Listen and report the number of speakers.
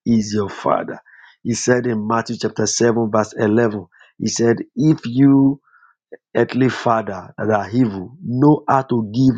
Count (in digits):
1